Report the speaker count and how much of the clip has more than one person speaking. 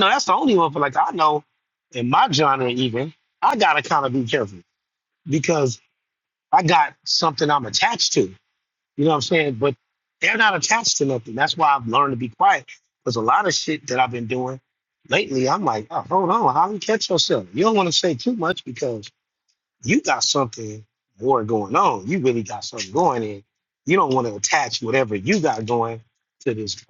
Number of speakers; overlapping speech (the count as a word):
one, no overlap